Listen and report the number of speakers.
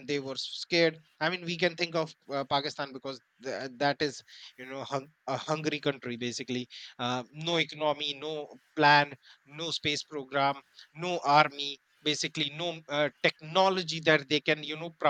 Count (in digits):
1